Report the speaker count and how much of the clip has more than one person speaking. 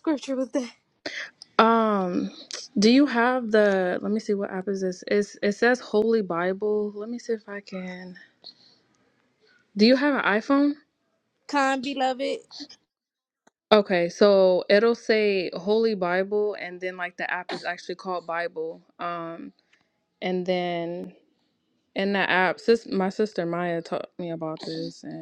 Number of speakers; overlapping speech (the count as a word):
two, no overlap